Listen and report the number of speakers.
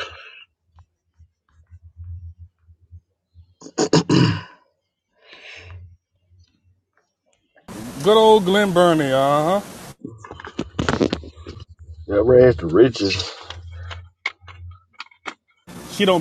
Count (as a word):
two